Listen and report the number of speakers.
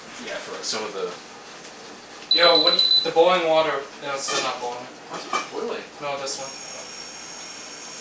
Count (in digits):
2